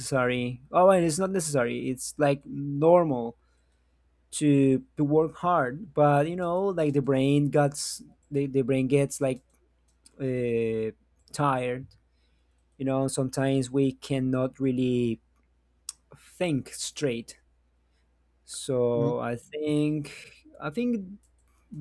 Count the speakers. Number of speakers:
one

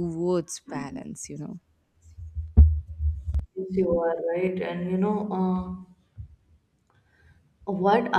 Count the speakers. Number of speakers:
two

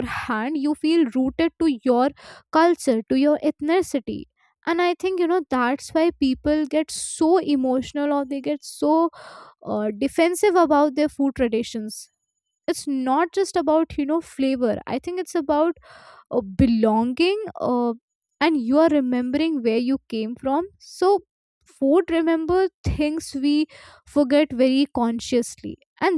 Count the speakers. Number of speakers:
one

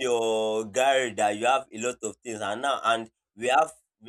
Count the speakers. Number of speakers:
one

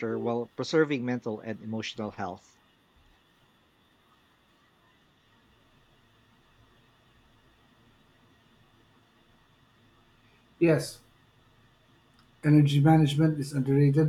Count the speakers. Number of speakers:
two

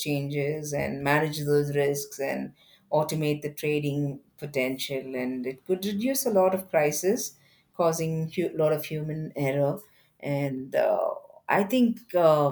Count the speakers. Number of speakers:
one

